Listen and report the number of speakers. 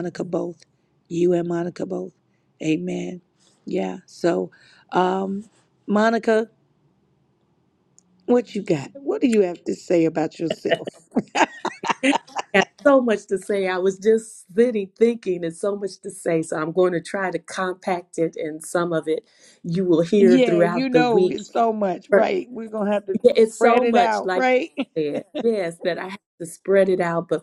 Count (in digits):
2